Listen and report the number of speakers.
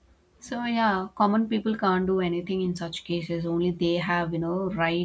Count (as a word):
one